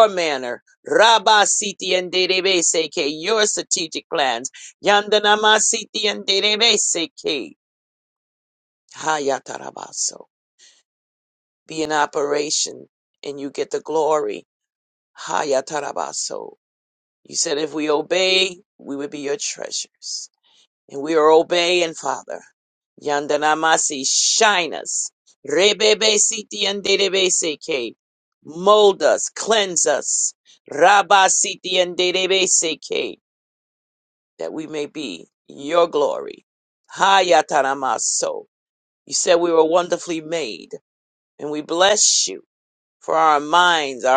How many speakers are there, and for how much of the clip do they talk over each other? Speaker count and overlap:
one, no overlap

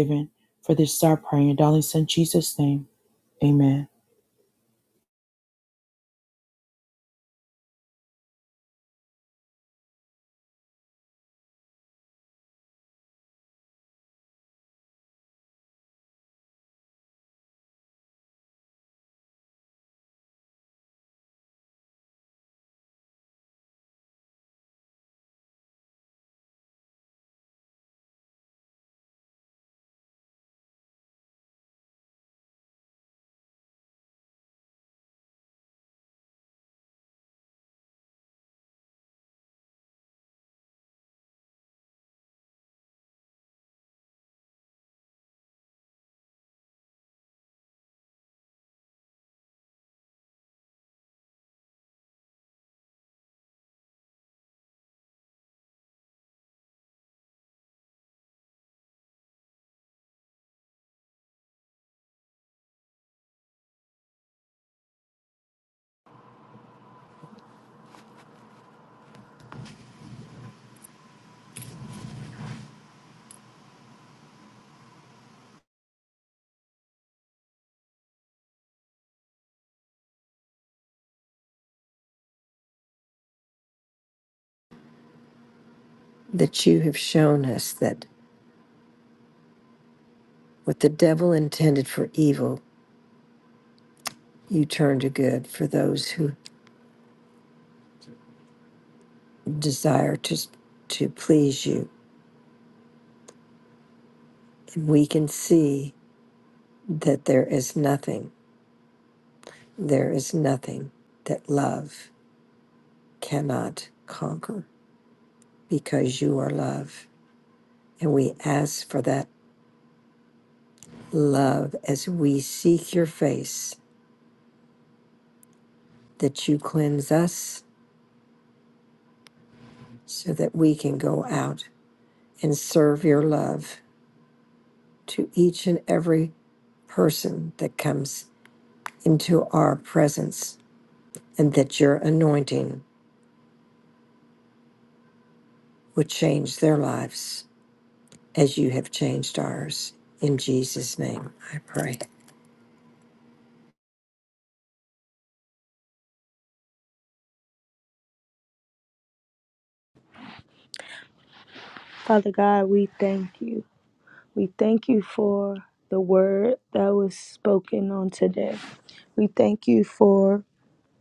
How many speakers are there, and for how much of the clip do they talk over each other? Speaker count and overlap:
three, no overlap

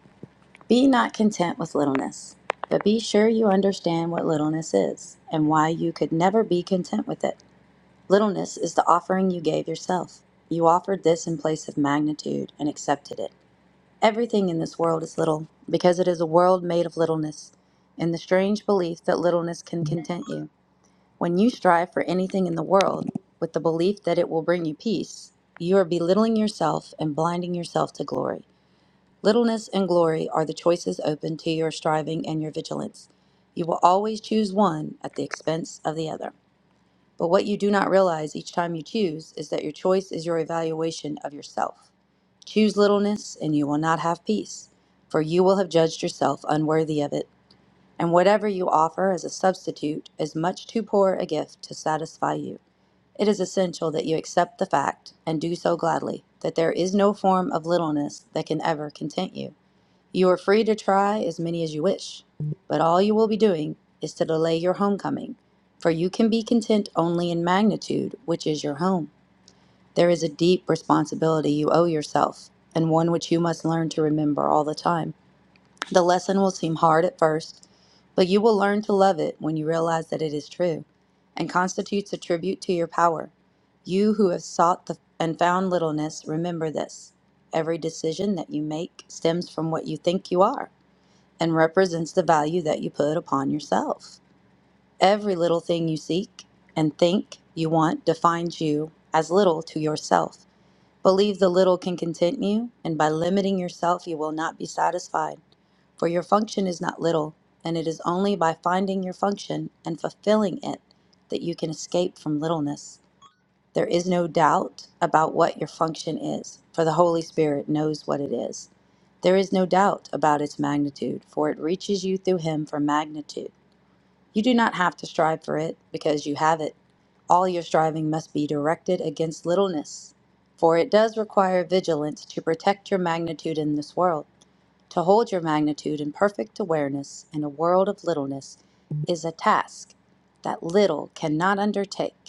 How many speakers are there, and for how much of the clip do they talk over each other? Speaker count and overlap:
one, no overlap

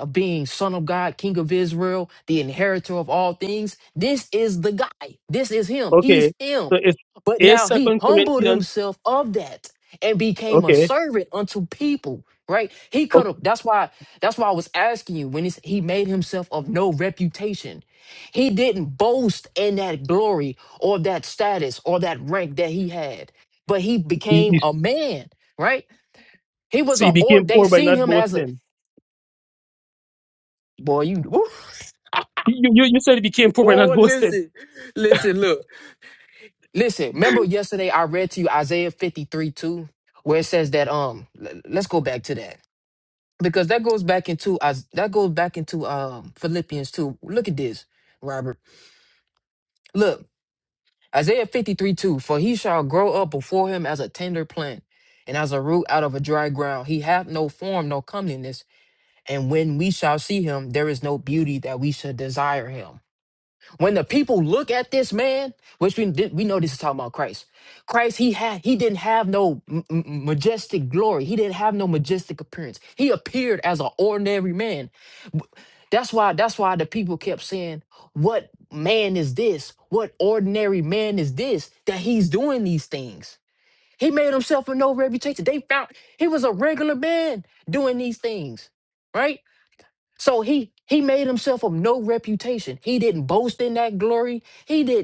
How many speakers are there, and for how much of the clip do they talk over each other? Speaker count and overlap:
two, about 5%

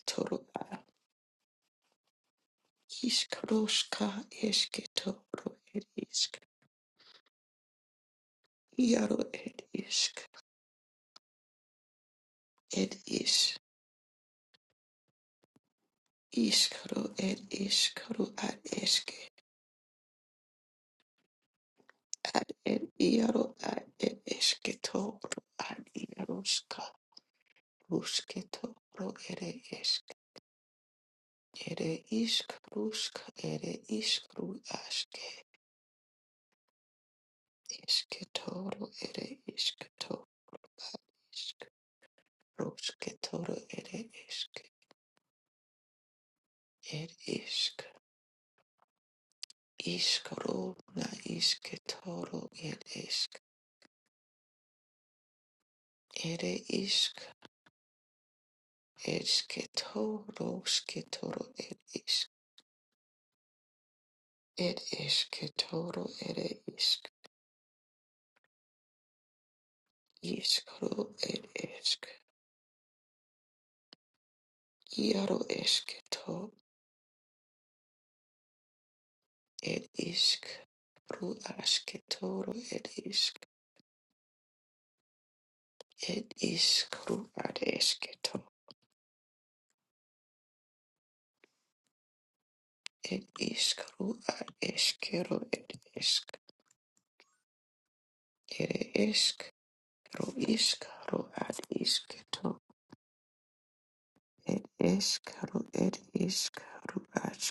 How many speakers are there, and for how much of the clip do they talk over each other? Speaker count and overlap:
one, no overlap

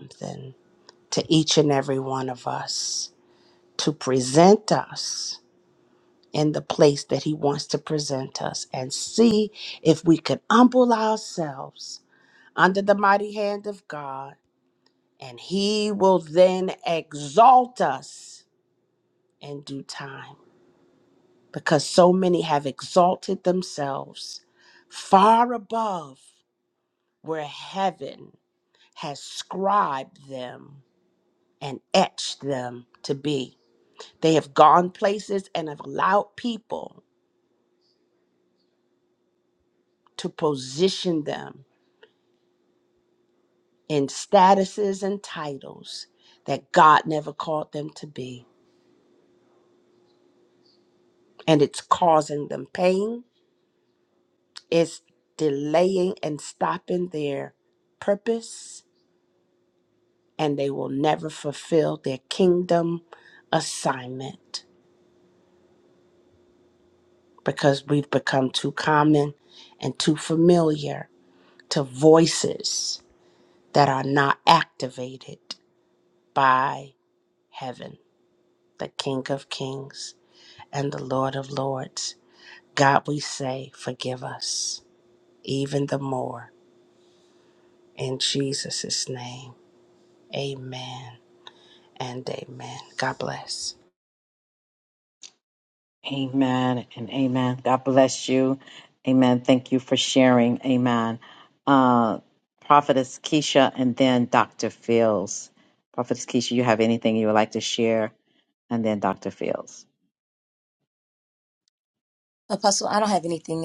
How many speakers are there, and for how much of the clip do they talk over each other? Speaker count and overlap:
three, no overlap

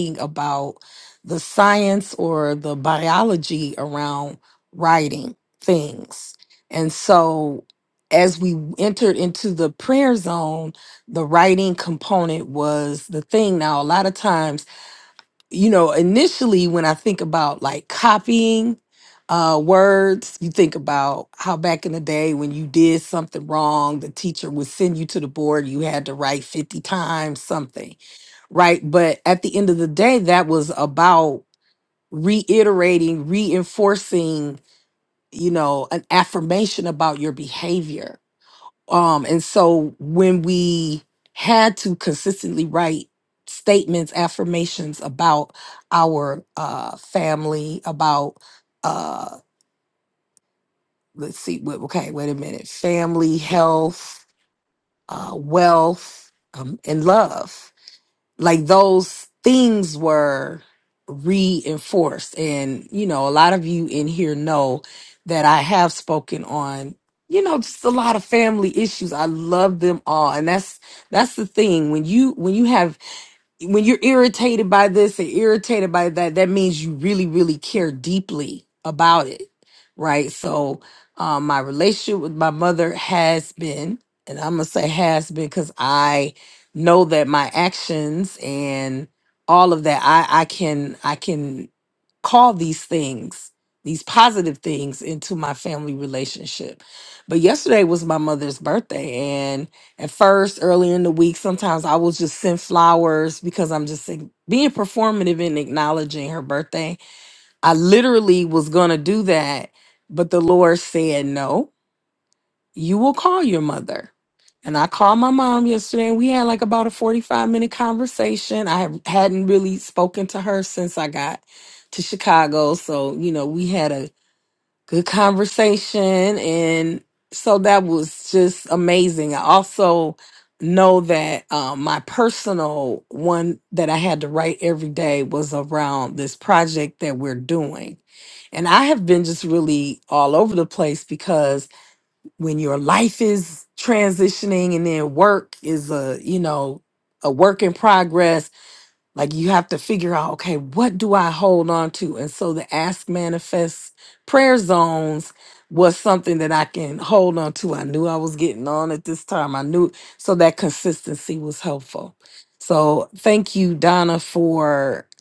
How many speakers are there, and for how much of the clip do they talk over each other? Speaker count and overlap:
one, no overlap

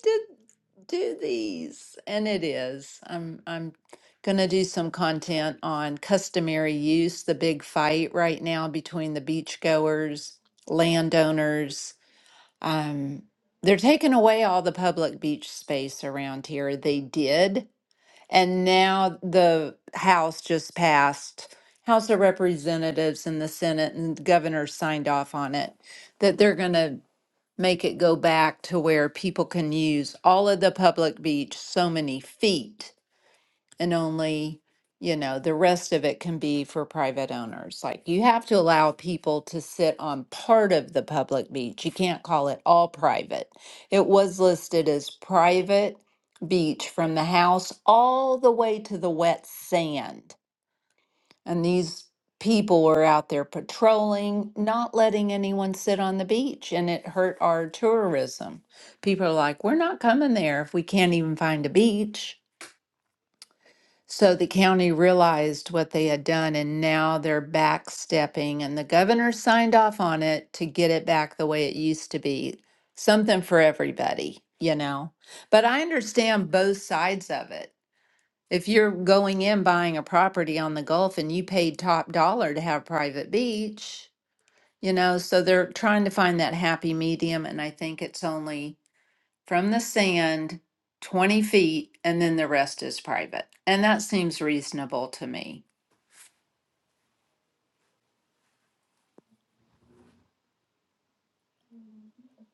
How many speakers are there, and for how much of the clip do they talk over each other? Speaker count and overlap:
one, no overlap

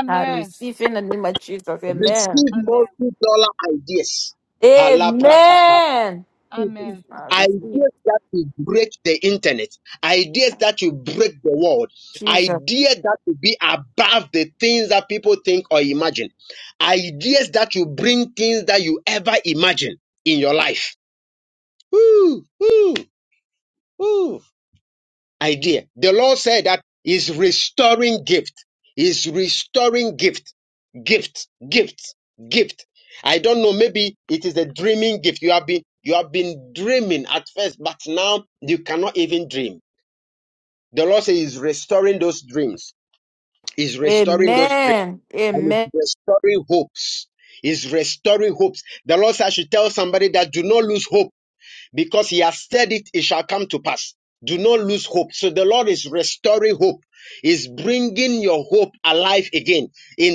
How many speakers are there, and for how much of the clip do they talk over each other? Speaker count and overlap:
three, about 7%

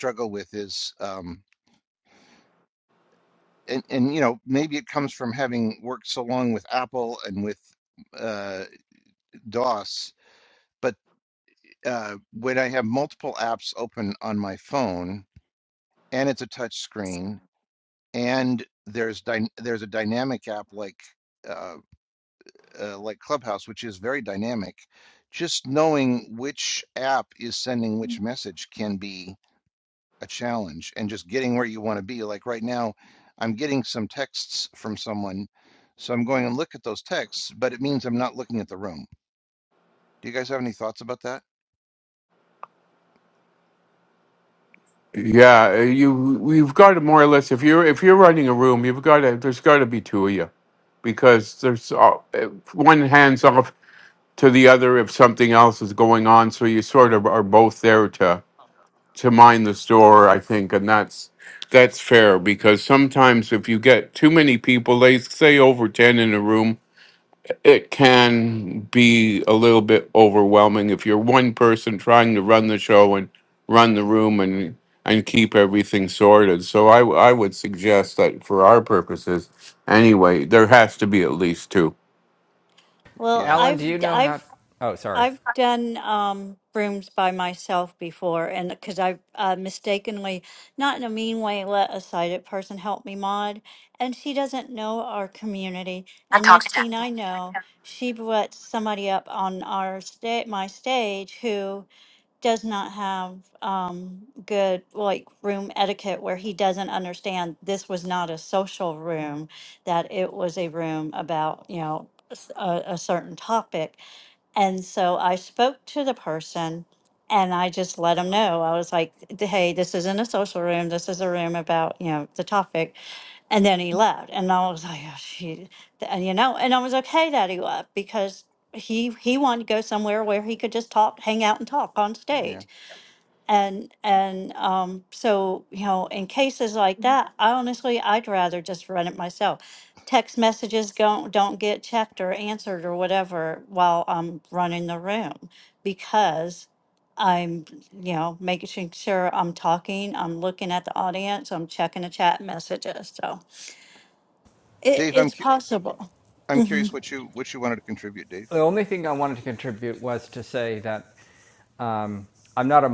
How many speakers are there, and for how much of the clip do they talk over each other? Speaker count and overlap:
four, about 1%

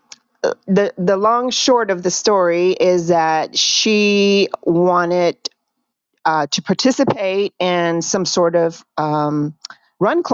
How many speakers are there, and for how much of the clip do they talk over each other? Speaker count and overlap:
one, no overlap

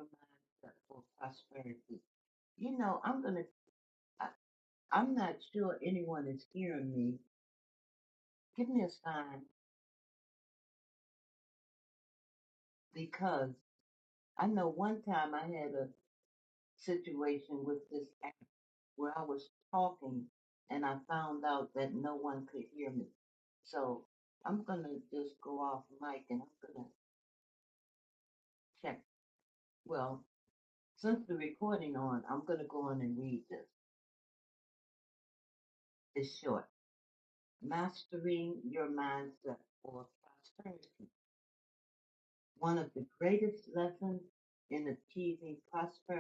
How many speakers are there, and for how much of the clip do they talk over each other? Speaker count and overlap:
one, no overlap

